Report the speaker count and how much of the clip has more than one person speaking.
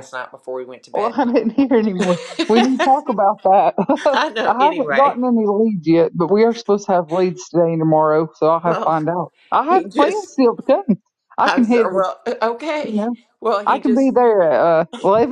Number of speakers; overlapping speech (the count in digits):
2, about 19%